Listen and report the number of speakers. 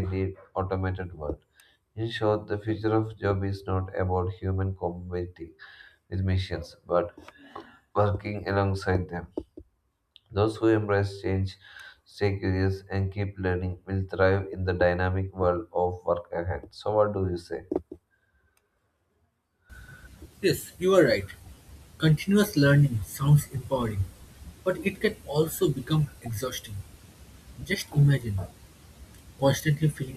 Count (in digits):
2